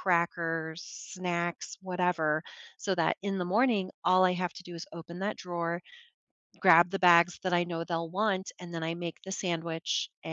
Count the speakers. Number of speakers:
1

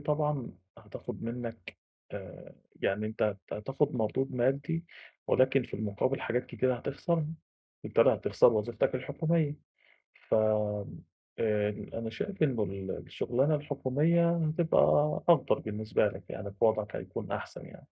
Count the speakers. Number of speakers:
1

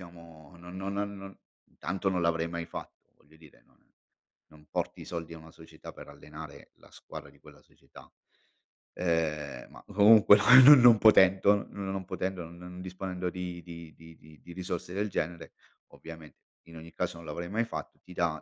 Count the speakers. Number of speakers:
1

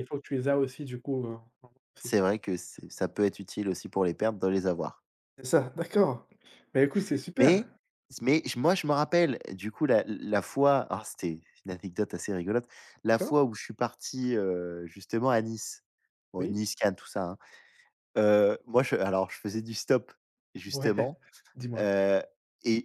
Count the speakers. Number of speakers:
2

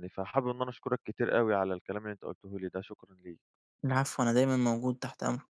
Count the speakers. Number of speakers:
2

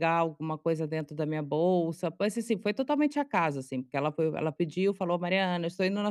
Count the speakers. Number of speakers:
1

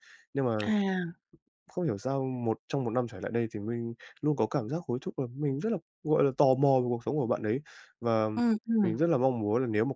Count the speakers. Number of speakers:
2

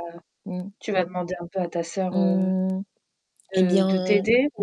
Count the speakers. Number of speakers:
2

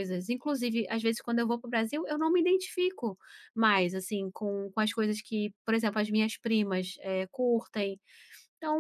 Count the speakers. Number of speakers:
1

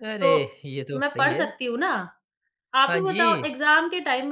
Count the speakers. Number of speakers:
2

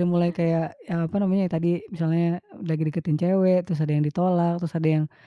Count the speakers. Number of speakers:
1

